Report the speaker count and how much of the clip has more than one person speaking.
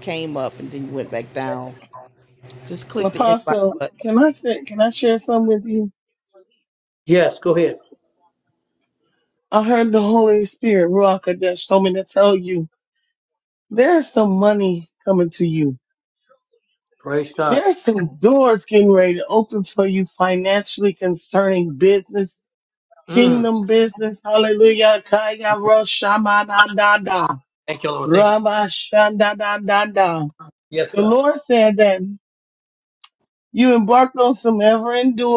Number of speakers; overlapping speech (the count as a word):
three, about 5%